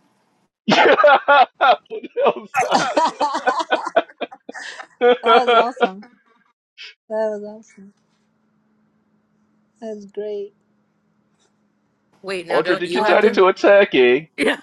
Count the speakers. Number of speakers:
three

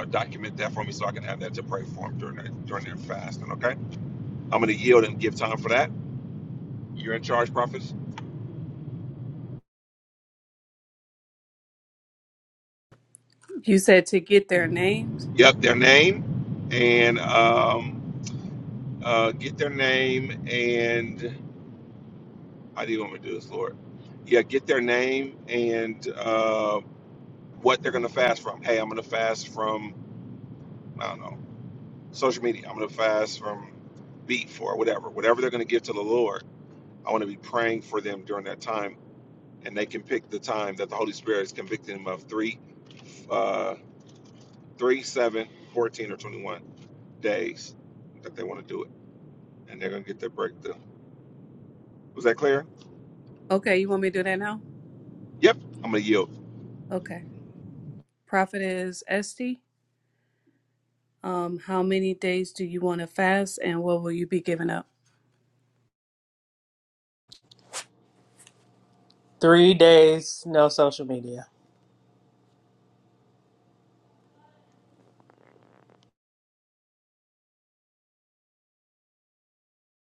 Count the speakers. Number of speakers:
three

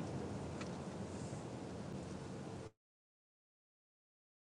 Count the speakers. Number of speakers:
zero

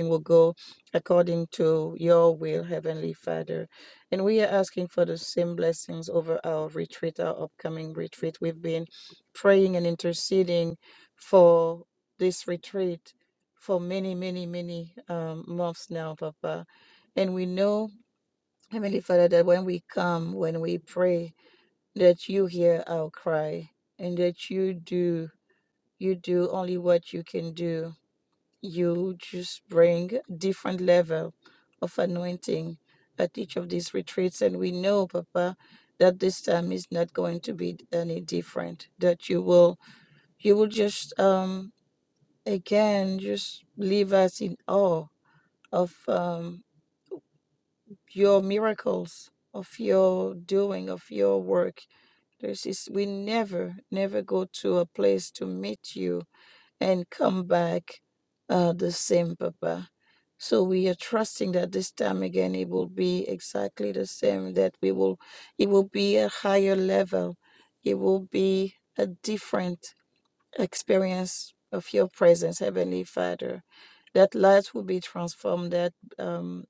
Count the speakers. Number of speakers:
one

